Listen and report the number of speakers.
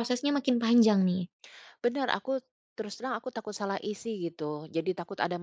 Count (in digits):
2